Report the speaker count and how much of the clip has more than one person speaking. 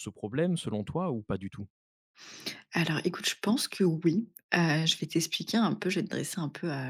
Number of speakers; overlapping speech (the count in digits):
2, no overlap